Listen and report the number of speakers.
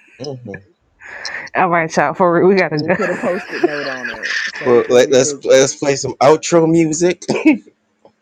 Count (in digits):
3